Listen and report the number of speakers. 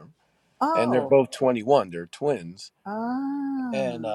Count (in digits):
2